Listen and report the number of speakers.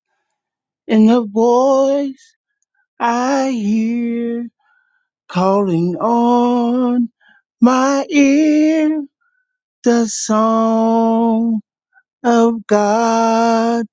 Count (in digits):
1